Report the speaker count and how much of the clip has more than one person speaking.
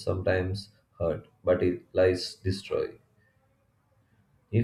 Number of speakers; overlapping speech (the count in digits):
1, no overlap